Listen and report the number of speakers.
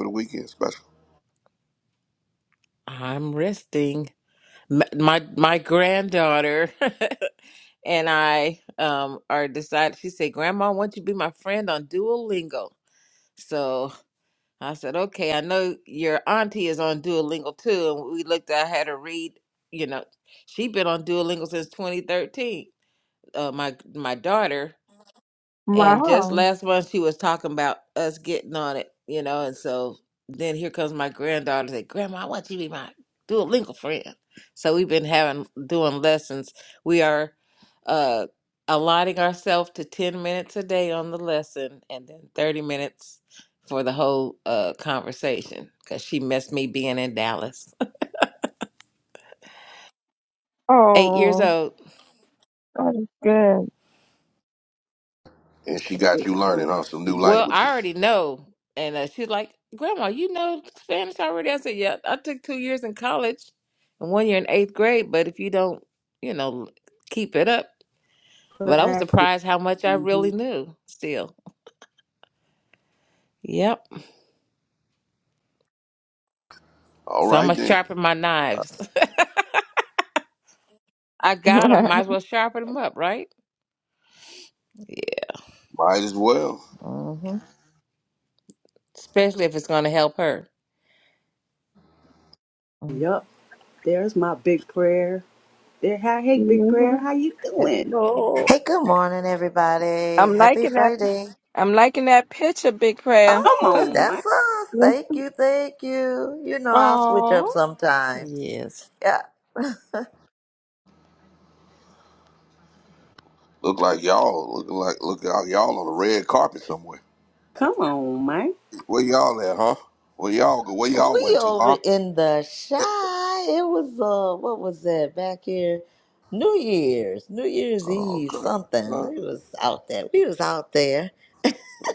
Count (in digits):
5